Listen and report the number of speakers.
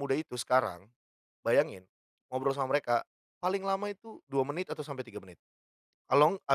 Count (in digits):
1